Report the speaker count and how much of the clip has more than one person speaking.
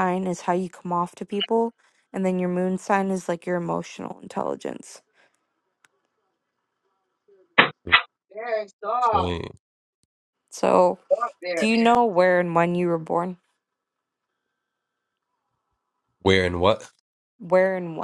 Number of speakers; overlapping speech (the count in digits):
3, about 1%